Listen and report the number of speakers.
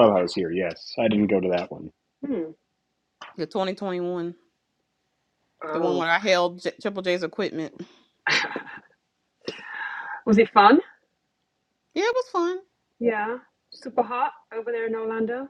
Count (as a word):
three